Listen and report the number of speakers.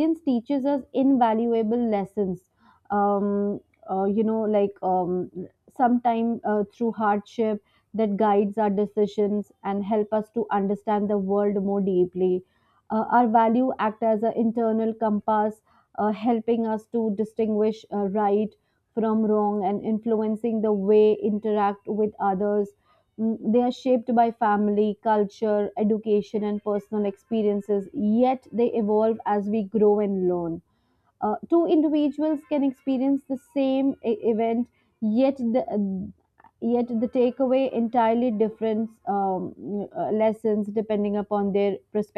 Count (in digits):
1